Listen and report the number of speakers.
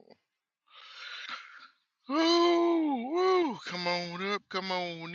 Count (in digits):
1